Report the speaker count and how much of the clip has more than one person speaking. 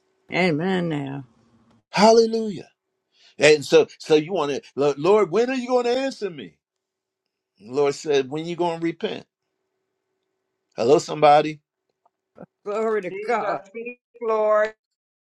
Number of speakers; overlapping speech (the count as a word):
three, about 3%